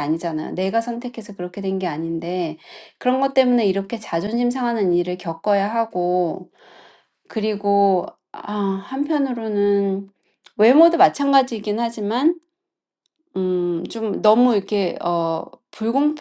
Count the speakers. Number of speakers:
1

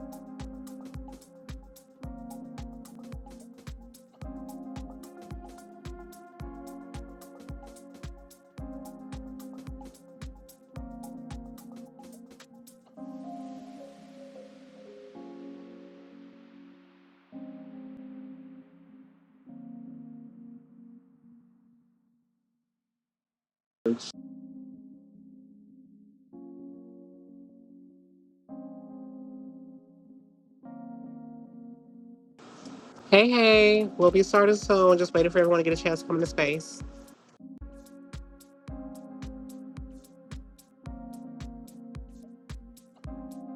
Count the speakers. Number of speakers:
1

